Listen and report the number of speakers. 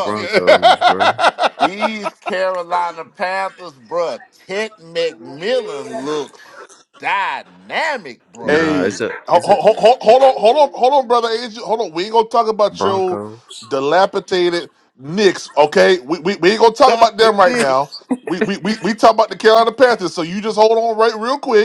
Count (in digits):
3